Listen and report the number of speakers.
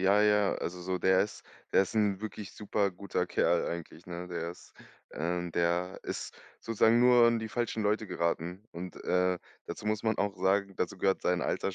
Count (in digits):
1